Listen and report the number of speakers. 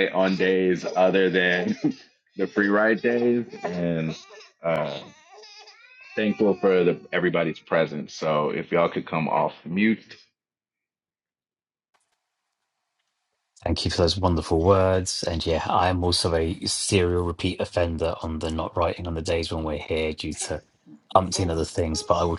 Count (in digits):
2